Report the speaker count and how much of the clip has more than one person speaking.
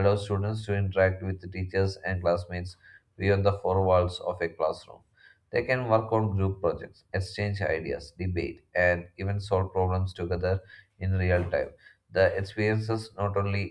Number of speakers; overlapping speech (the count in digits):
1, no overlap